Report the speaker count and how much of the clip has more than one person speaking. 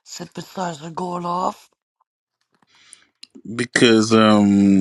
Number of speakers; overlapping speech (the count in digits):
2, no overlap